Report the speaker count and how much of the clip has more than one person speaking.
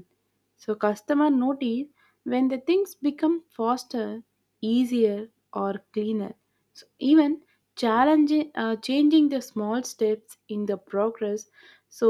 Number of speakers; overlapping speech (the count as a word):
one, no overlap